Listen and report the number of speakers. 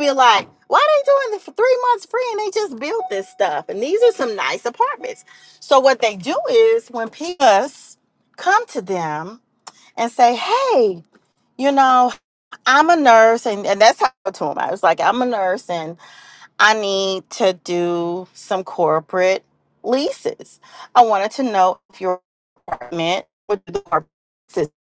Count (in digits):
1